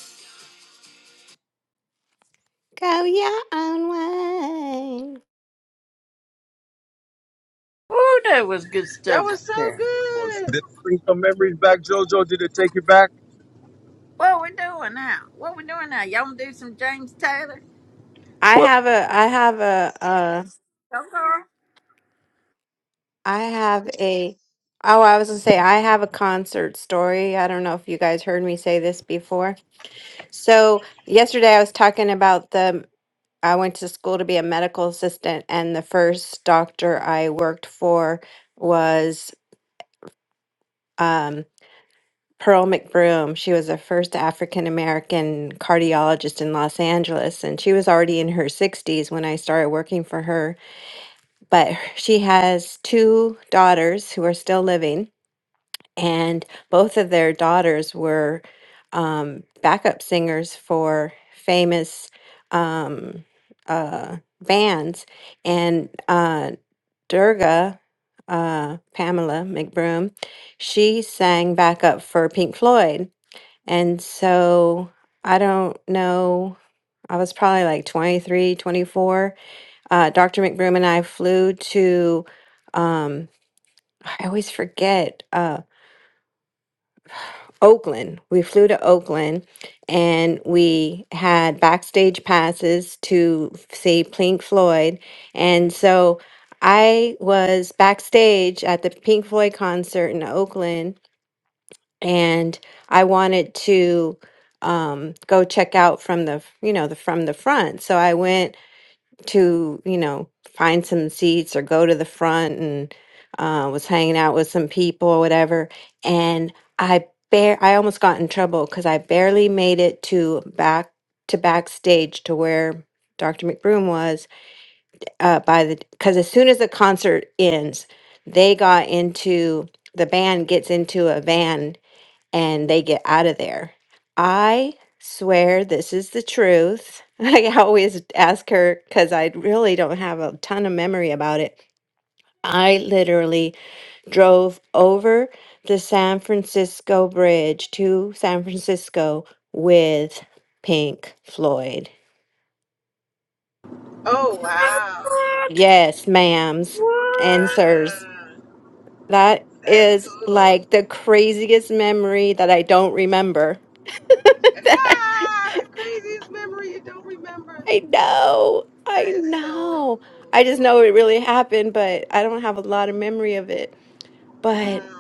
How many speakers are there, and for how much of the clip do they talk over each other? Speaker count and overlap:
four, about 3%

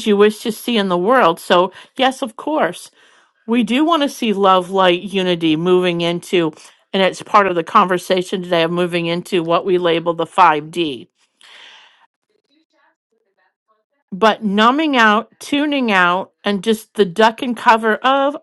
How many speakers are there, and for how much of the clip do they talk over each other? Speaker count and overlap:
one, no overlap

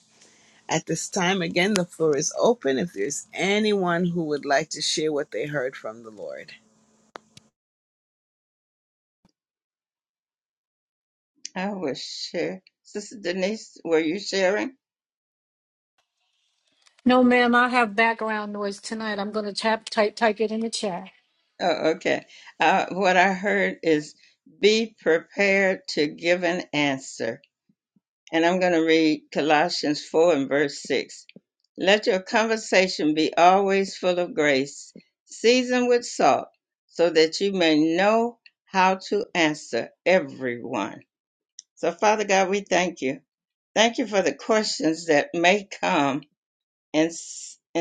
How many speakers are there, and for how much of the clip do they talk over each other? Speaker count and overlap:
three, no overlap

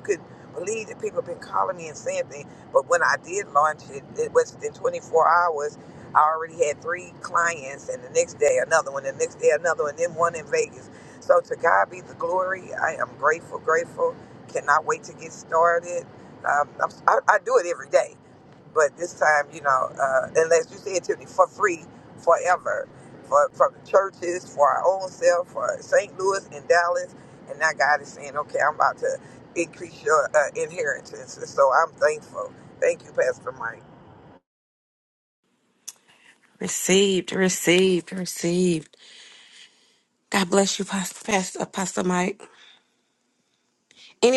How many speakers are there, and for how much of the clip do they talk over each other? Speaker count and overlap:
two, no overlap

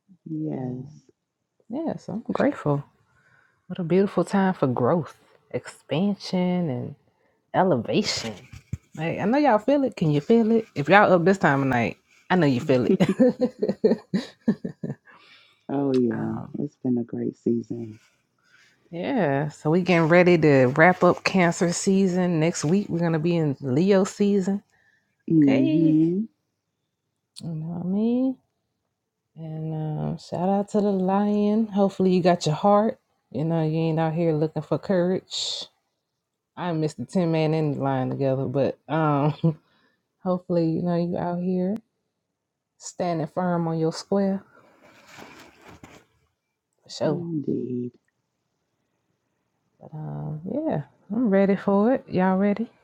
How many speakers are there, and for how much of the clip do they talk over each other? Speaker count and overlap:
two, about 2%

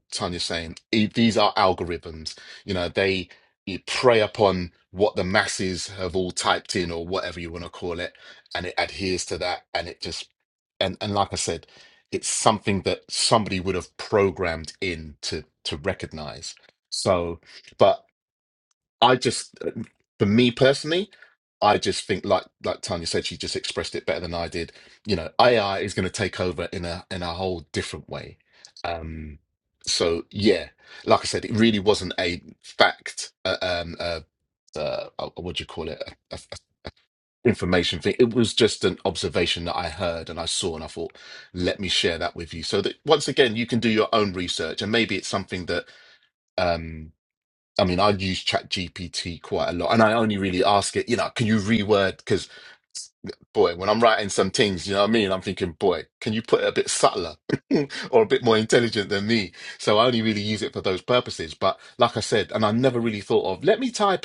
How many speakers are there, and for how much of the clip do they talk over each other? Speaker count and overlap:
one, no overlap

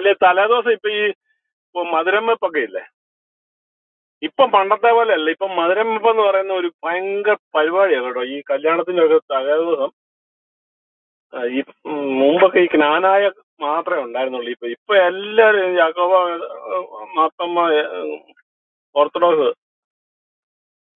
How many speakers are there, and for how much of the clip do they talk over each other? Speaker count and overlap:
one, no overlap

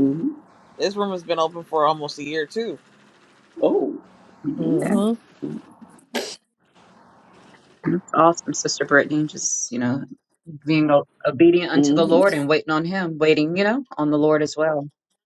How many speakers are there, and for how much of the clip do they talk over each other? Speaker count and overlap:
three, about 6%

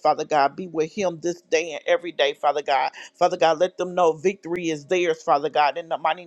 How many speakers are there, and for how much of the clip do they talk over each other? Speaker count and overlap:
one, no overlap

